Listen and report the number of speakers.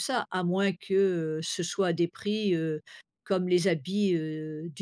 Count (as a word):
one